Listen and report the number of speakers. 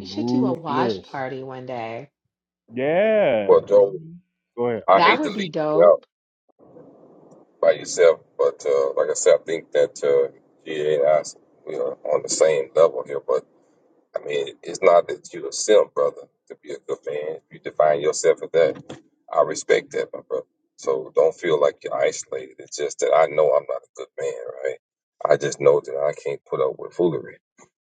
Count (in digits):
3